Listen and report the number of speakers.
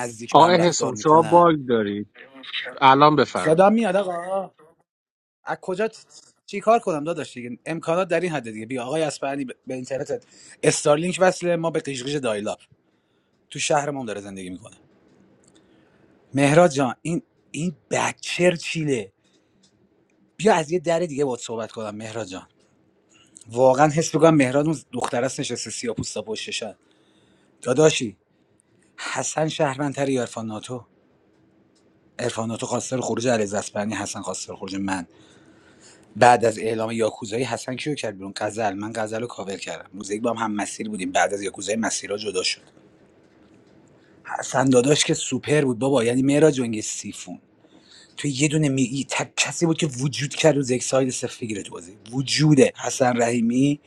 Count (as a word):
two